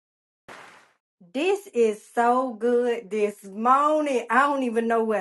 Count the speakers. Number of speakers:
1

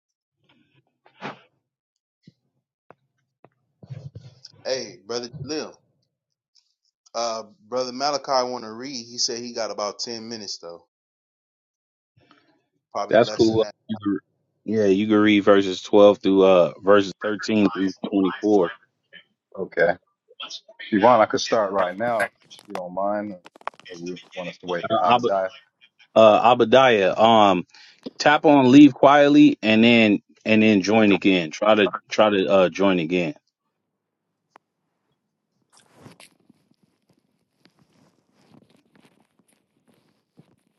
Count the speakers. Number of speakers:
3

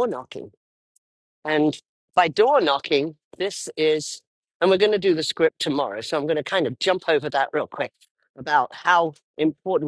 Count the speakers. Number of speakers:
1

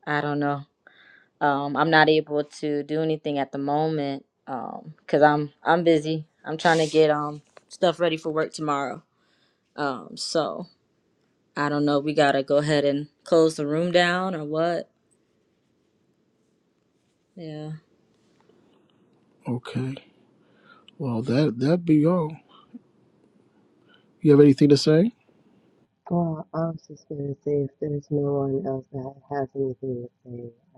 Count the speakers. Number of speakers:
3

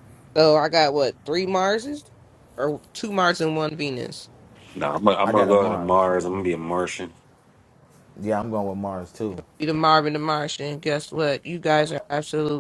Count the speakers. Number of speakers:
3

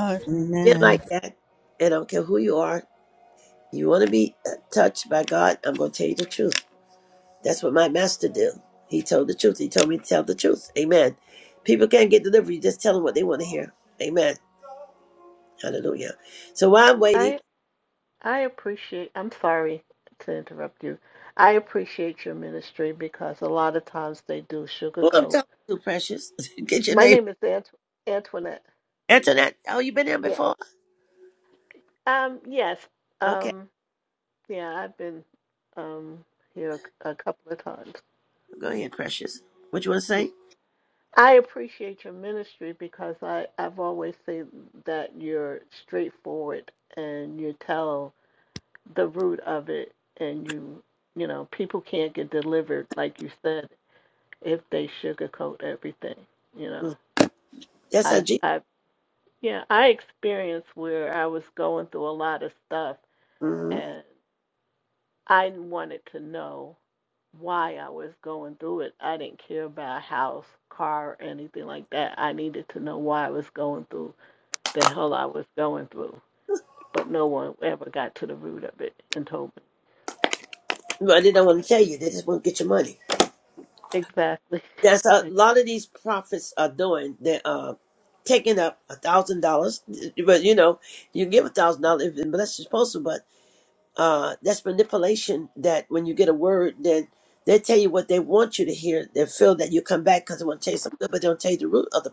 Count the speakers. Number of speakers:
3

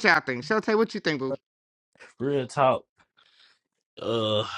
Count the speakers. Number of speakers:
2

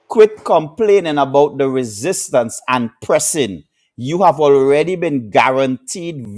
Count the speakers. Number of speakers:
1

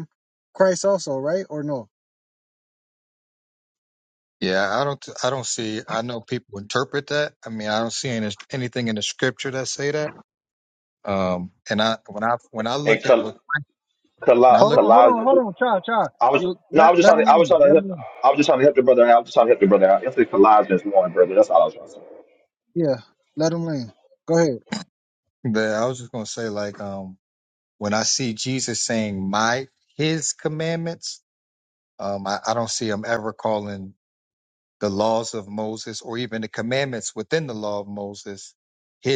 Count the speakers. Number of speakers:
3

